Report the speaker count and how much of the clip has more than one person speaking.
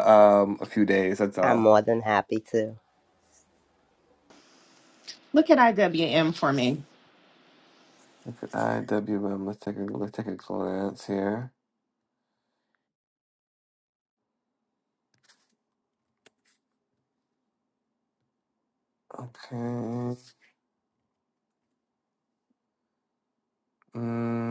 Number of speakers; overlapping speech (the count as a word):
three, about 1%